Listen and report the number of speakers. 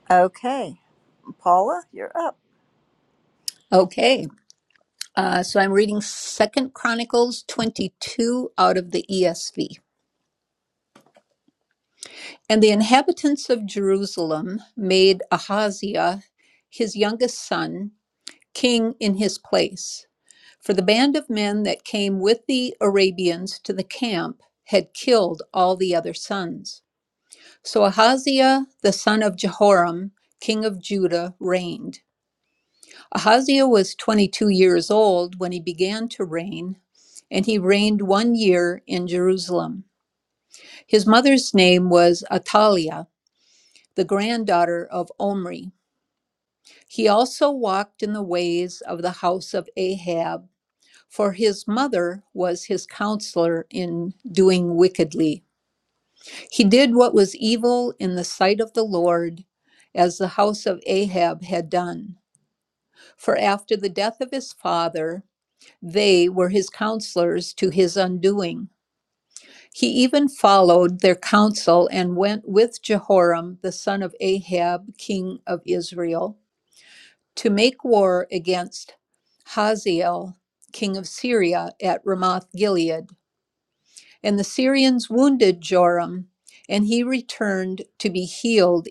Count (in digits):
2